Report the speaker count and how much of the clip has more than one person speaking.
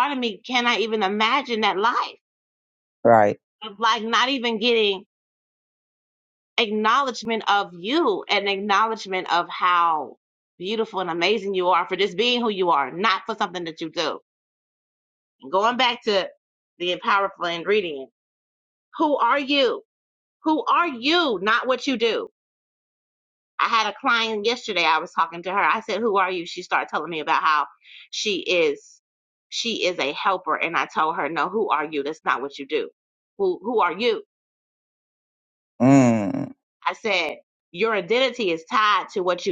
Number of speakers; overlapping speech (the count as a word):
two, no overlap